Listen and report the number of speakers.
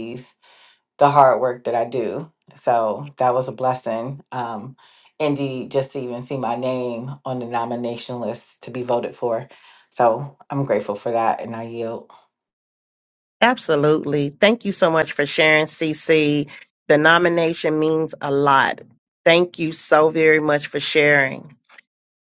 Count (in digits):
2